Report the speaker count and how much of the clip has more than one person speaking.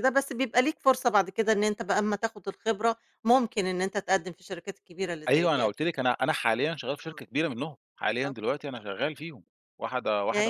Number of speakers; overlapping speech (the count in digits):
2, about 9%